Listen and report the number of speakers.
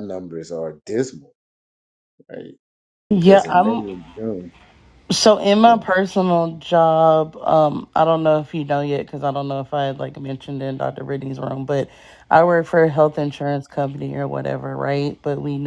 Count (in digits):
2